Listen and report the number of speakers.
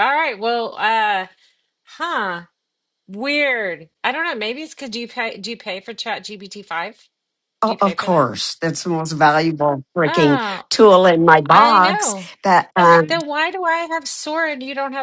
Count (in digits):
2